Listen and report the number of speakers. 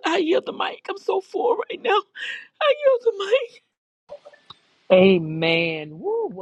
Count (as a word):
two